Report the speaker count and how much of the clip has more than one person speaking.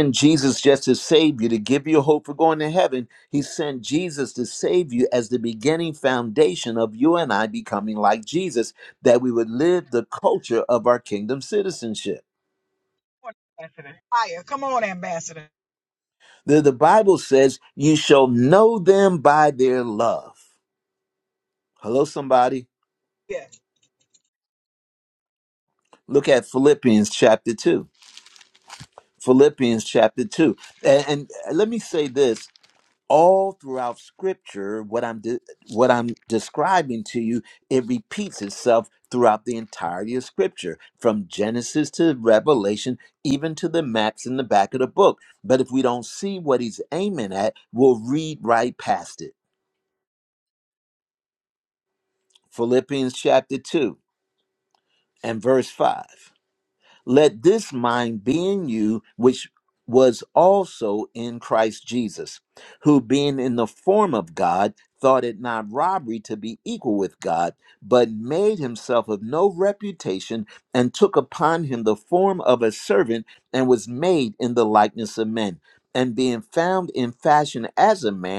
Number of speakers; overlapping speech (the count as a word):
two, no overlap